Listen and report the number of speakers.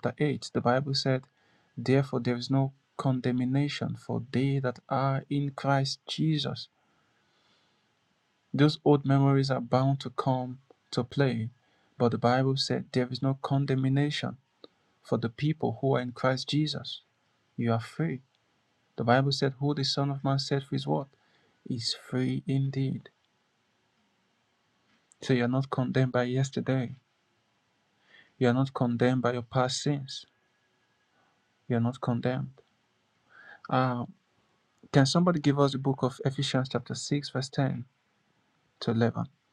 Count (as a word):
one